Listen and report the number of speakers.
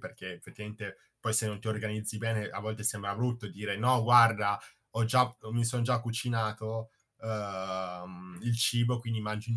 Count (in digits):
1